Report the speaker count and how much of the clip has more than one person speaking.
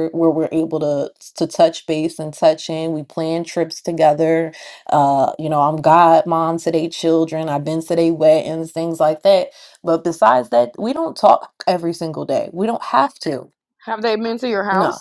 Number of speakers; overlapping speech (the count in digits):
2, about 1%